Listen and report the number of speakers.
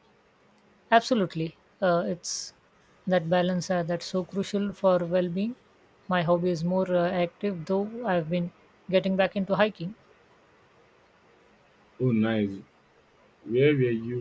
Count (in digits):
2